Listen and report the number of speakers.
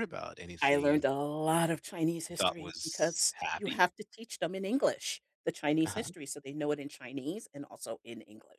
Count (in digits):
2